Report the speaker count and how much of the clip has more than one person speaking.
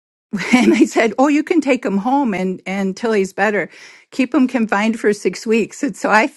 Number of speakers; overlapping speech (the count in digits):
1, no overlap